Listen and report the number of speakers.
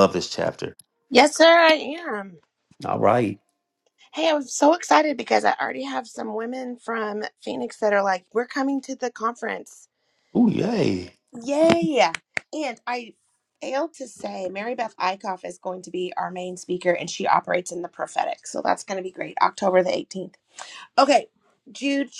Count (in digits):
2